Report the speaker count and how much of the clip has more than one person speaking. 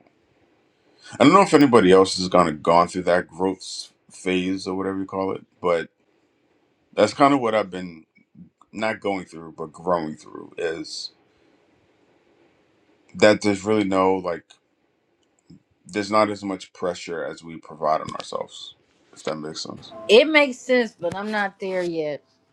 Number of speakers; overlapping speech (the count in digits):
2, no overlap